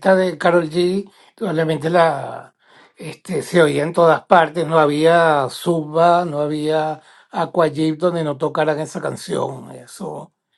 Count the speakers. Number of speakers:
one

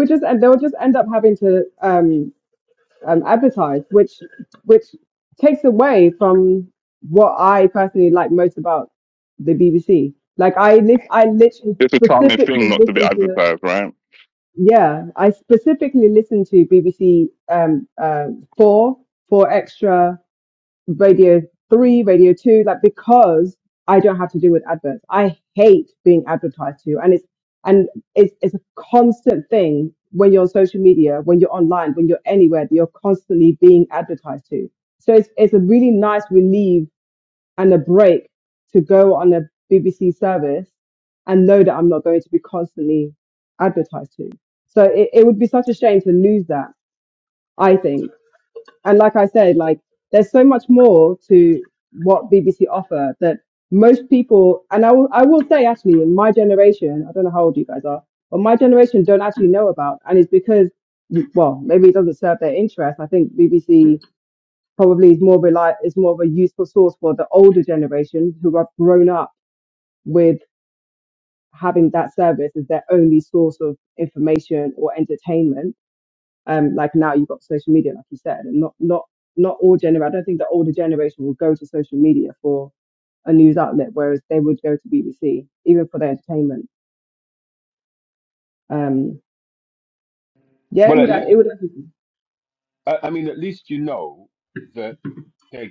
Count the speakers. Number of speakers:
three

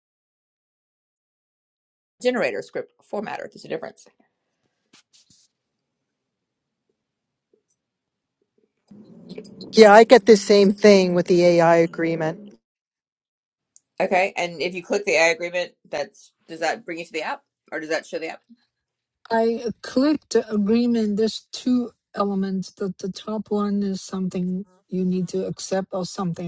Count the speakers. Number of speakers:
three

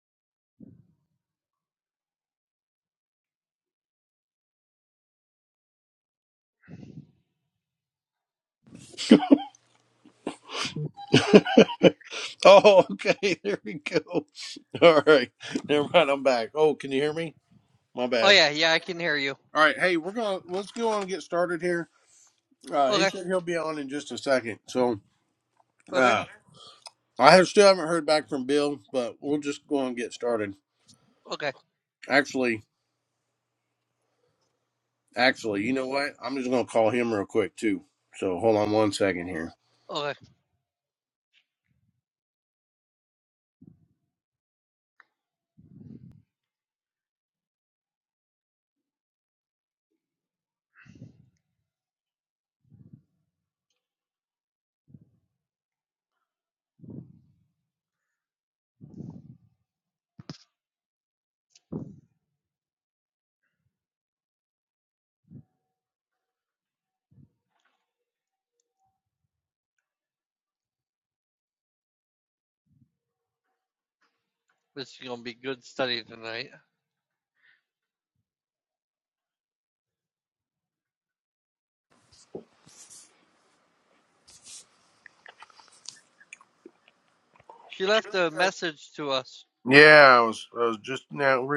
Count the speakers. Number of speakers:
two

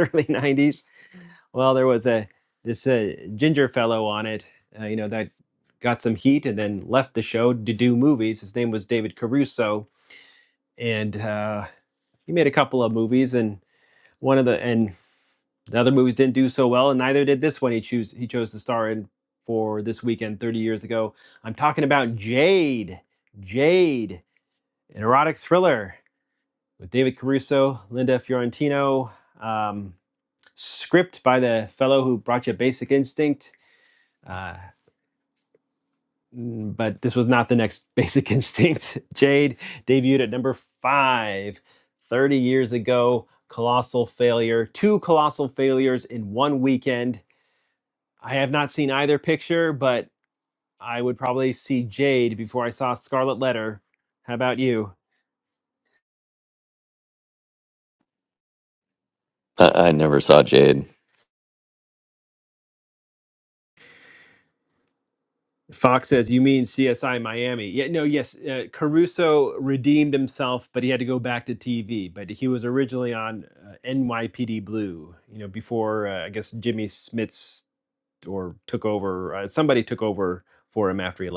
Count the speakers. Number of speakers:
two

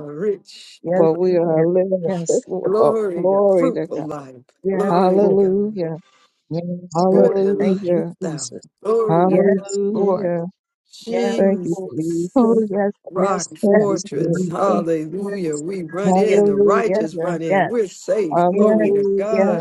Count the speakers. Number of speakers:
three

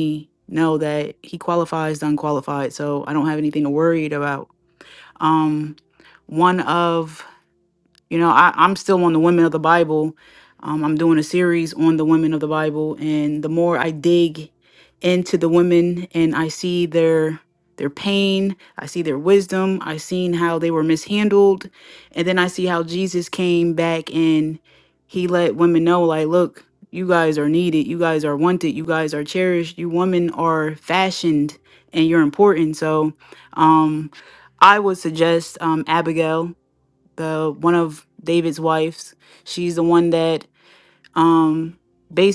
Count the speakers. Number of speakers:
one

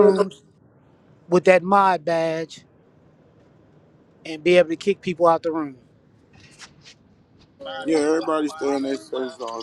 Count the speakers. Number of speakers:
two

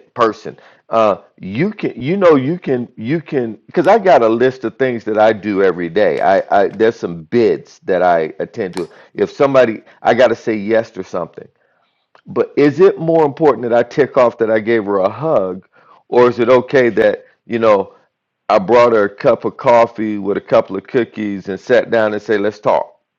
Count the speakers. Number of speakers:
one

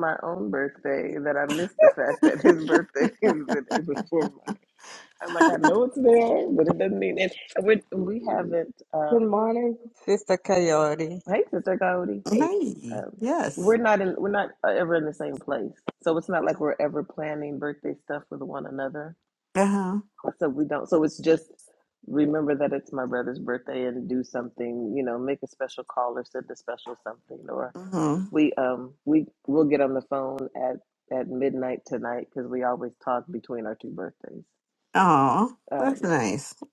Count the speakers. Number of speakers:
three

